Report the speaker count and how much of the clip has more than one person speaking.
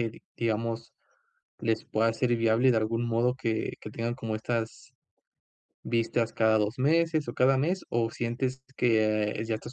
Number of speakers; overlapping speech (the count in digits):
1, no overlap